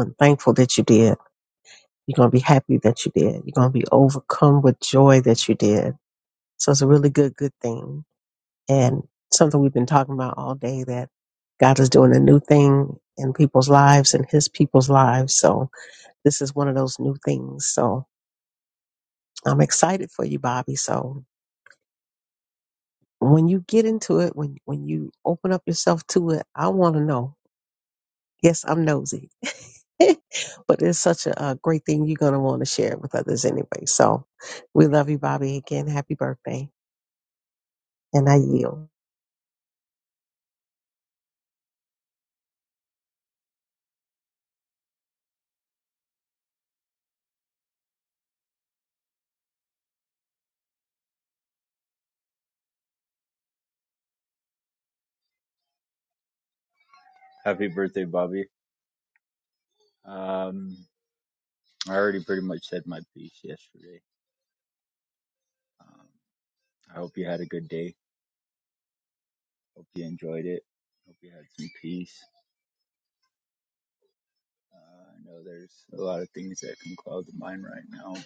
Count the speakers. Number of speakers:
2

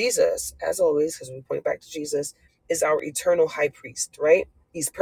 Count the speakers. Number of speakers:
1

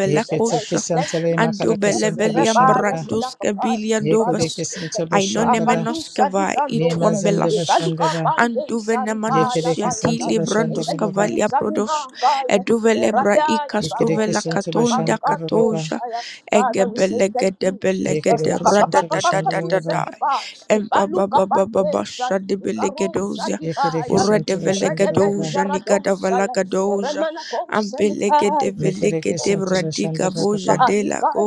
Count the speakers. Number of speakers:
3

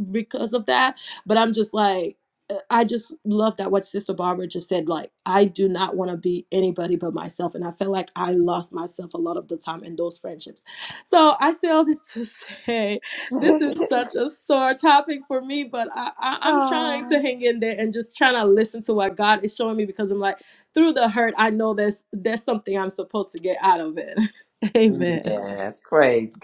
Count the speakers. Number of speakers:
2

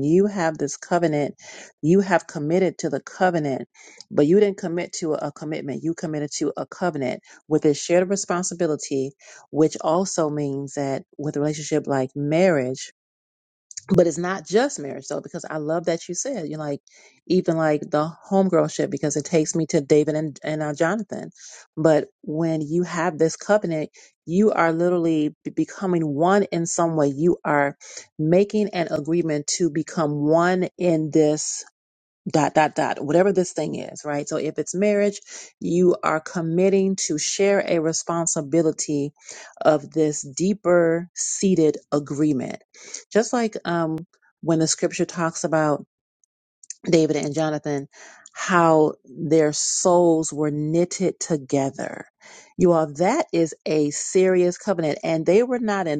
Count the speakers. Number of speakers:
1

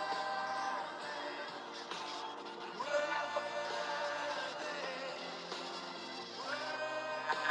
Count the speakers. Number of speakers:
0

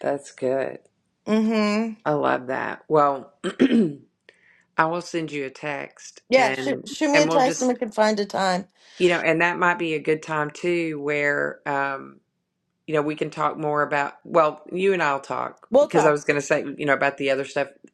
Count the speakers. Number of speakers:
2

